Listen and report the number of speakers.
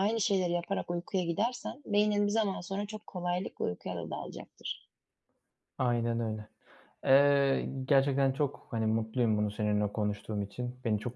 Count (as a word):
two